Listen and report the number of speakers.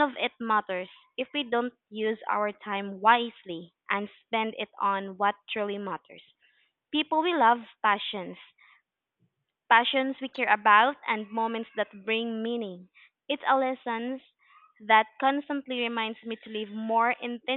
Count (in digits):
1